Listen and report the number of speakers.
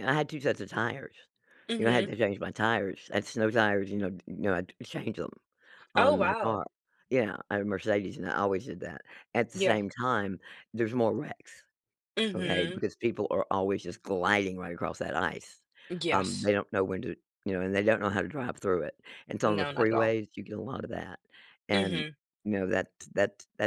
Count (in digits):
2